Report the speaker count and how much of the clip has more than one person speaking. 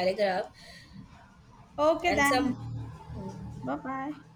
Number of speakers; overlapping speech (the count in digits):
2, about 12%